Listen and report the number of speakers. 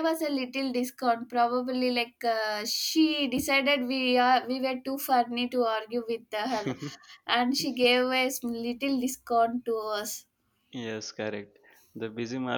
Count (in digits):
2